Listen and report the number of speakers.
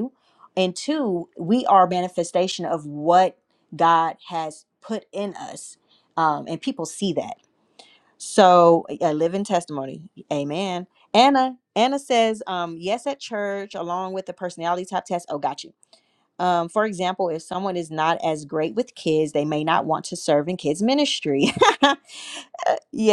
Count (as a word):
one